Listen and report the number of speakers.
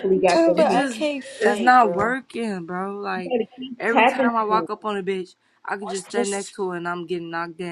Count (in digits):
3